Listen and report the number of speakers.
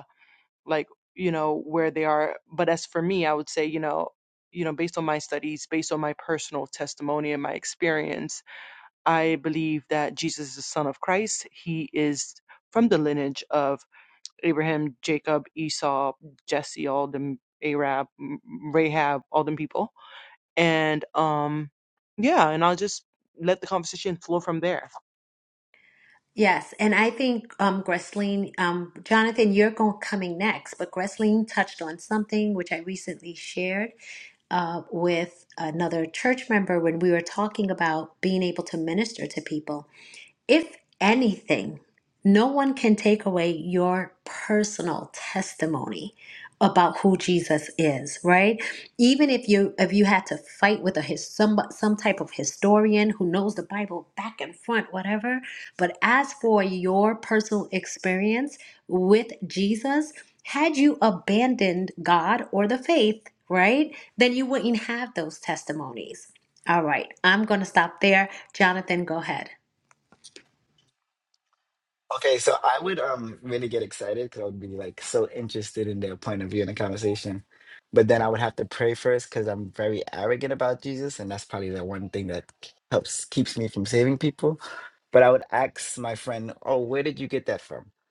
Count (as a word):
three